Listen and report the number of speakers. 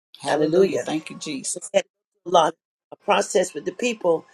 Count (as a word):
two